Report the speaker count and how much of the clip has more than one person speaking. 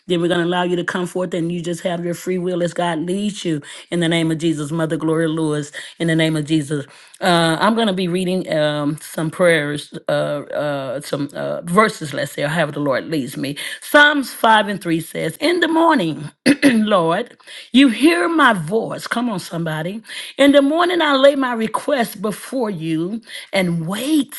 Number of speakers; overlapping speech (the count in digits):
1, no overlap